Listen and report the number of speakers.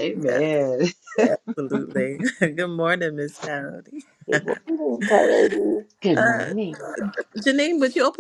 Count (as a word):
three